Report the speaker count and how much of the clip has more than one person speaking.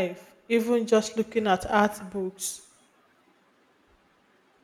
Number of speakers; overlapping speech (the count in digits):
1, no overlap